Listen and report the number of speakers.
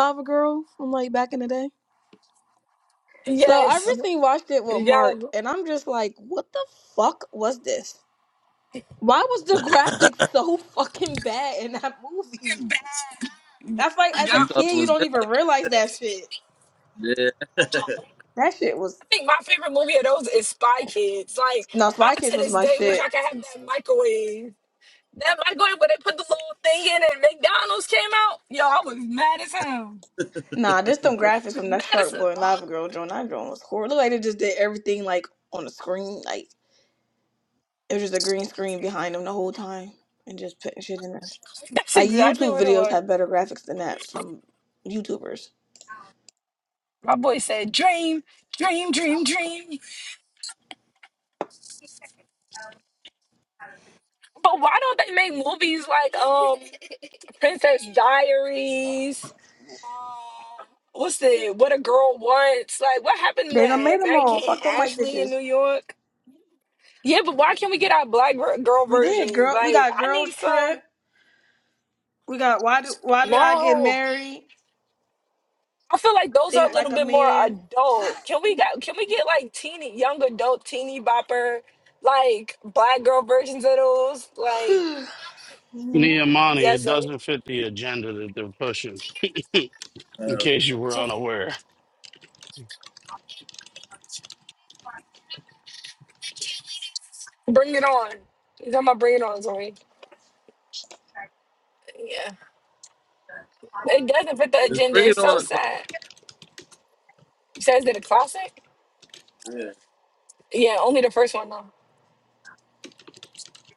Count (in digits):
4